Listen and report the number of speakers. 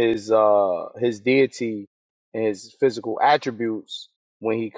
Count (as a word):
one